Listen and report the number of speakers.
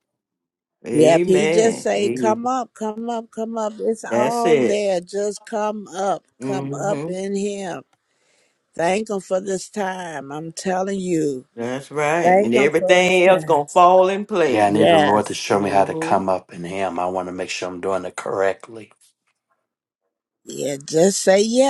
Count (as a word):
three